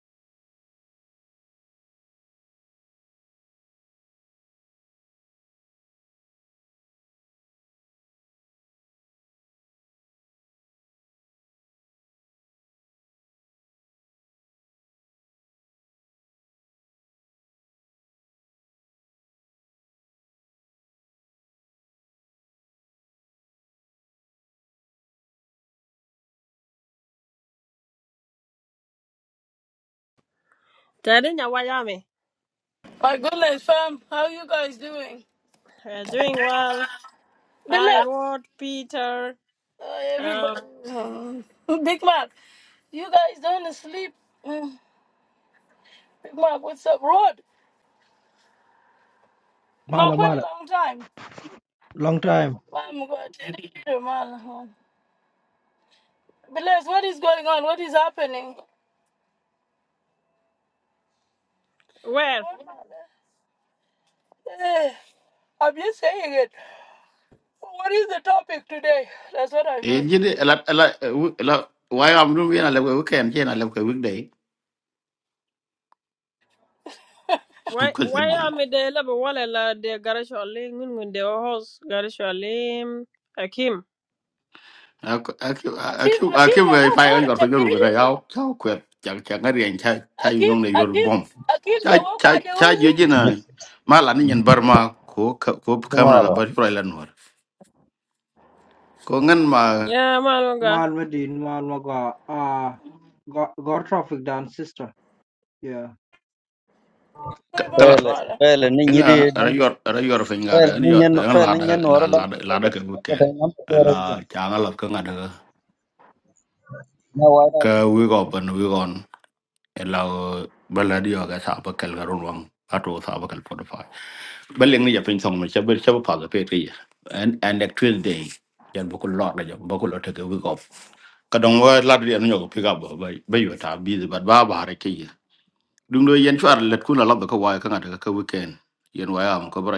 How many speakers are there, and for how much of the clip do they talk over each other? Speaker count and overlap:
five, about 8%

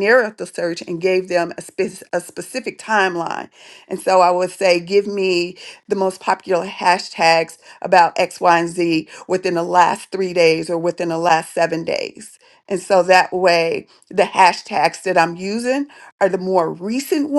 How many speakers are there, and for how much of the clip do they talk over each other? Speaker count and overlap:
one, no overlap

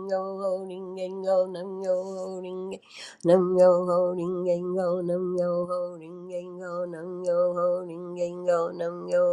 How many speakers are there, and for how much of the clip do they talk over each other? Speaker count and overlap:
one, no overlap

